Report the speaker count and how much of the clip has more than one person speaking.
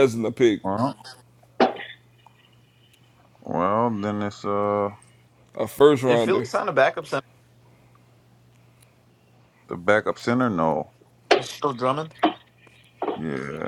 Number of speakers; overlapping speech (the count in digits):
3, about 3%